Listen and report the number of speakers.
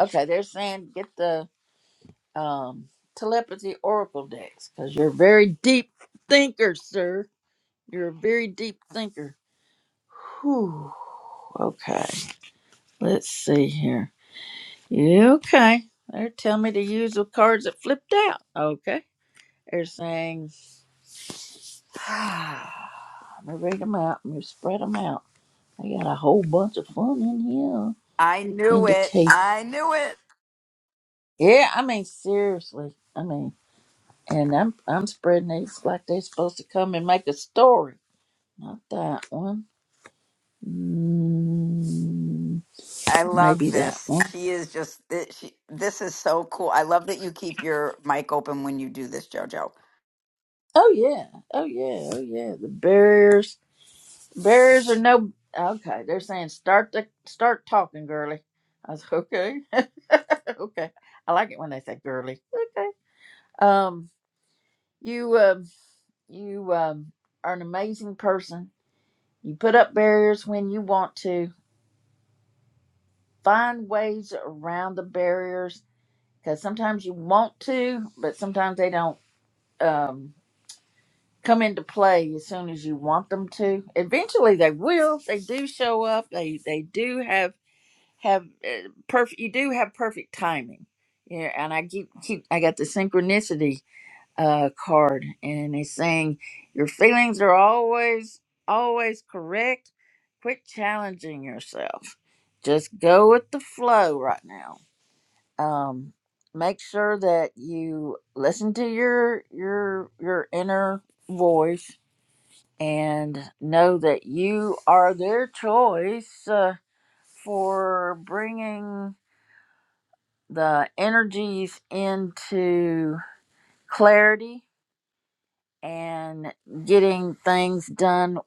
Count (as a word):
two